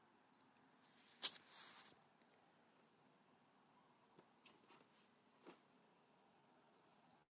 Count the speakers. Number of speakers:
0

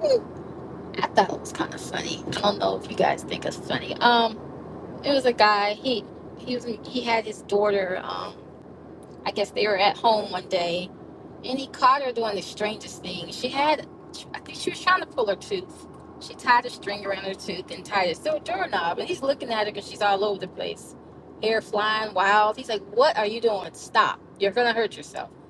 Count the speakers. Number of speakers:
1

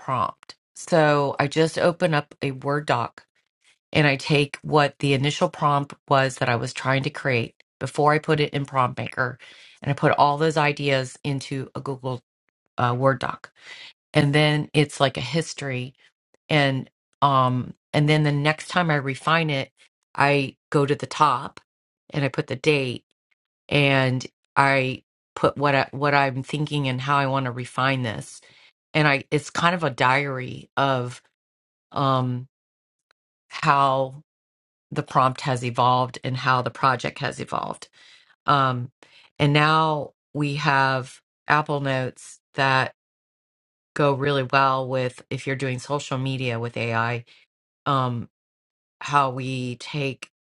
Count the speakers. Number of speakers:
1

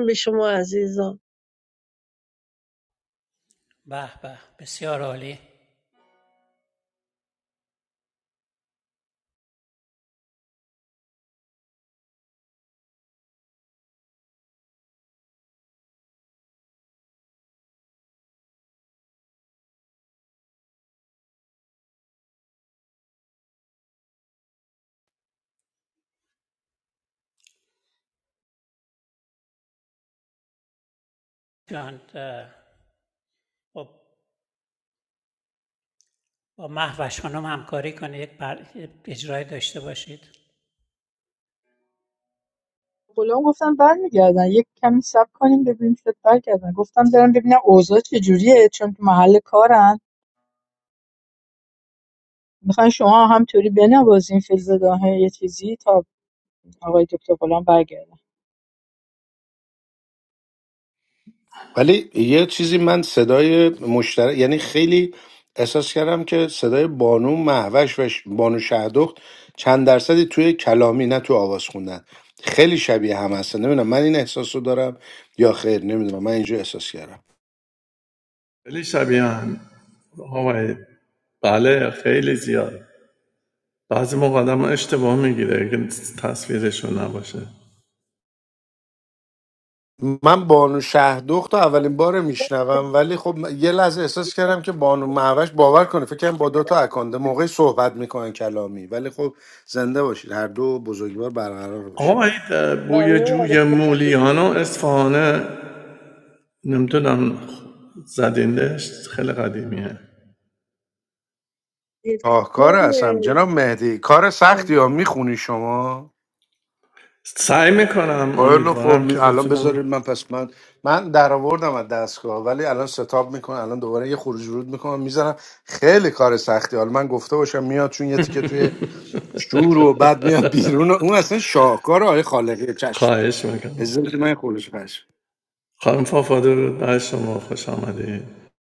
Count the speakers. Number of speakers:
5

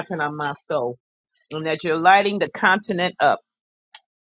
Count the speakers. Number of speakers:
1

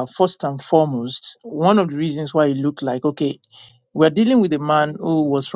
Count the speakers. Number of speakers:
1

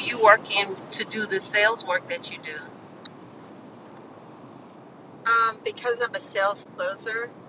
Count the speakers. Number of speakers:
2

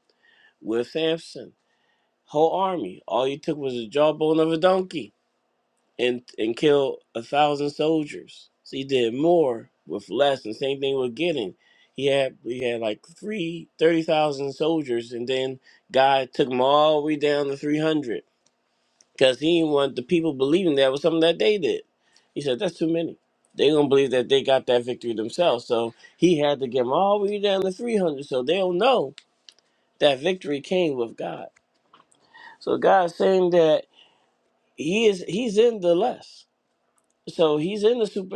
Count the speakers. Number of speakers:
1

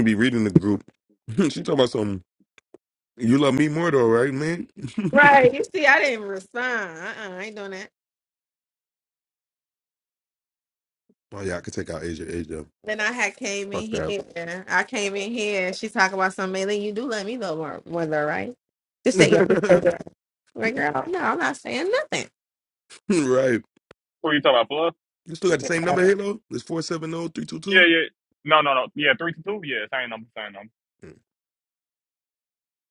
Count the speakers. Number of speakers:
3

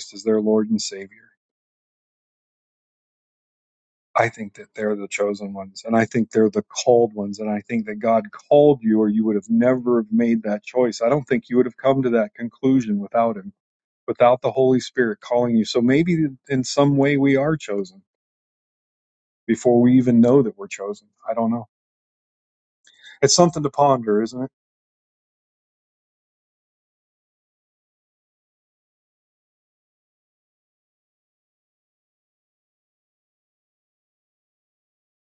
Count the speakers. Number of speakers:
1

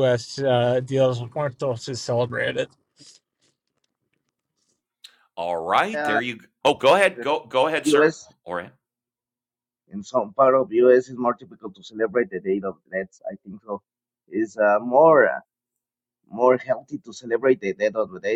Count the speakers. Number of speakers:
3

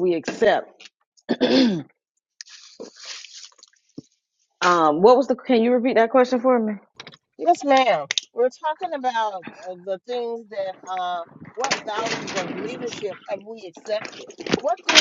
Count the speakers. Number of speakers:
2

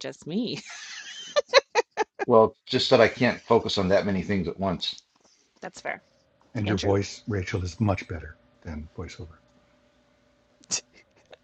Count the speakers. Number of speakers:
3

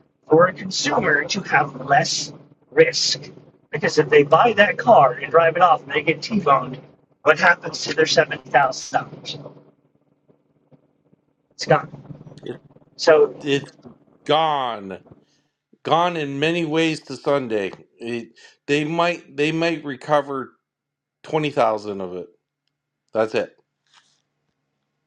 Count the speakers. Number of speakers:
2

